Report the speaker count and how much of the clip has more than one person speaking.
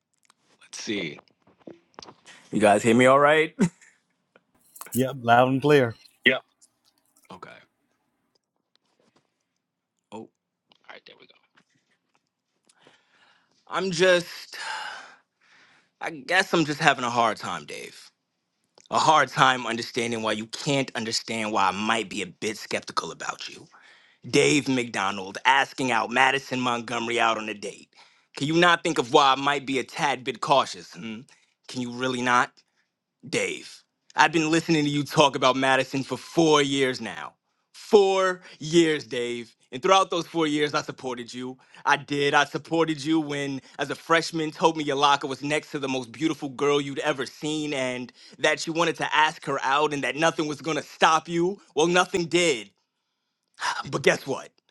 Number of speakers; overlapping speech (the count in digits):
2, no overlap